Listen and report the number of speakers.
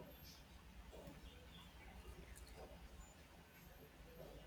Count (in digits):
0